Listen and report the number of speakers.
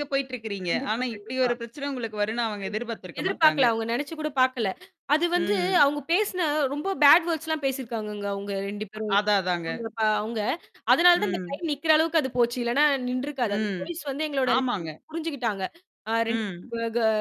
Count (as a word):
two